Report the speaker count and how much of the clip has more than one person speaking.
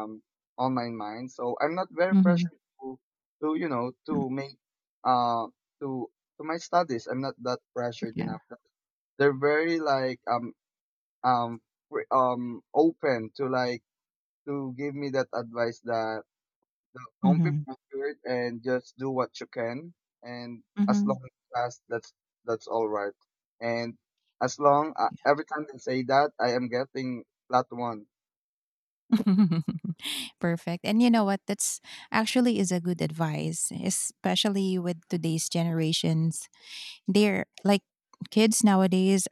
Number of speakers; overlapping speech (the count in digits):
2, about 3%